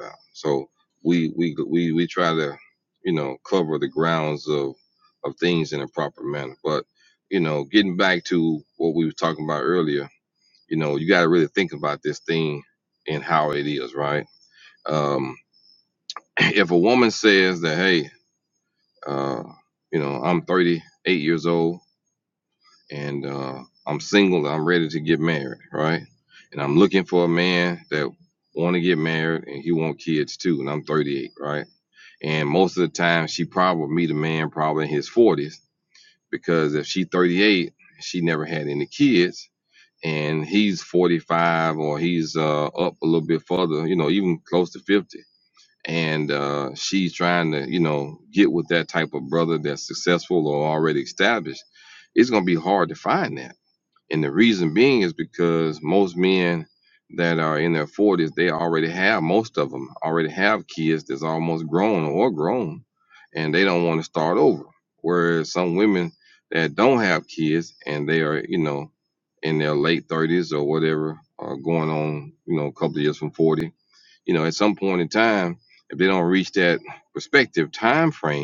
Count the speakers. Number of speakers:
one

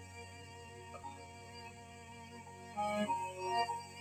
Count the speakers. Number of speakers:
zero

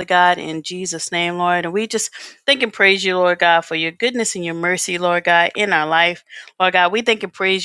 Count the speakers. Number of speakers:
one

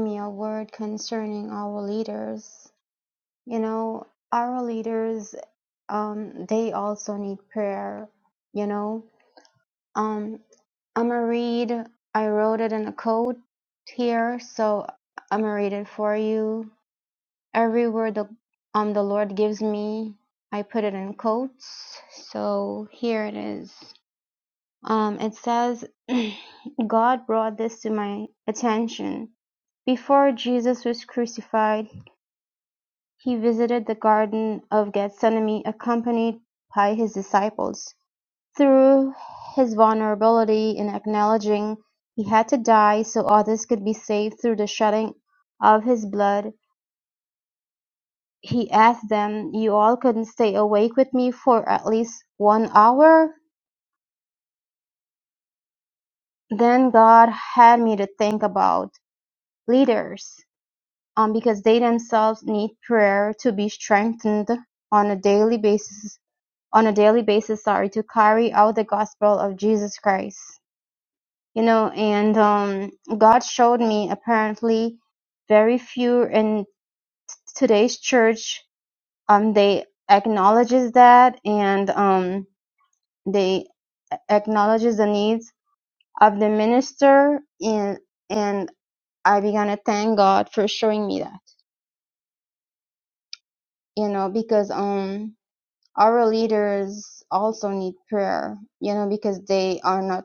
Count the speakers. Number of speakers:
one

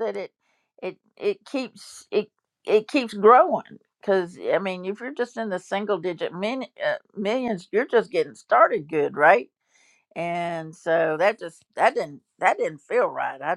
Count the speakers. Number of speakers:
one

